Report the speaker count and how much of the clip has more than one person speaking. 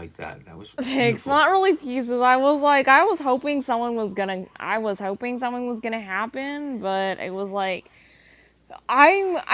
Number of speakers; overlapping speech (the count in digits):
2, about 7%